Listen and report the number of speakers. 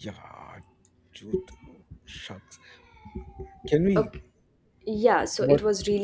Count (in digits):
2